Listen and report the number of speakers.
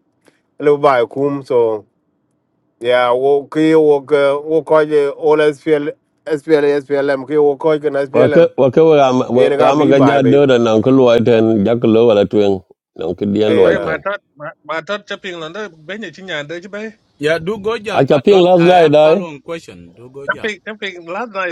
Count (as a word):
four